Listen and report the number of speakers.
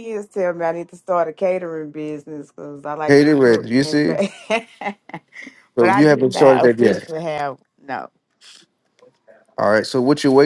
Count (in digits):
2